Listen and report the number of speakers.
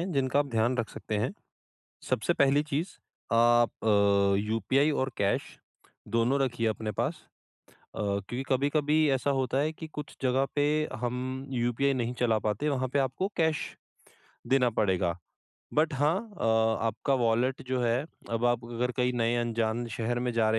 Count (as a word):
one